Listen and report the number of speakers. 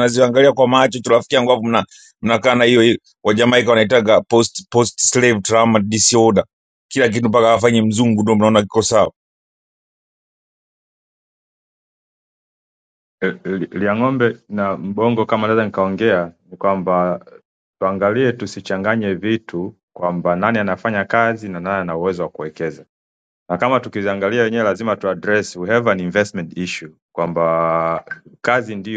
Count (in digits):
2